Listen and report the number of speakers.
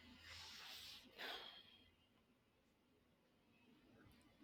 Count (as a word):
zero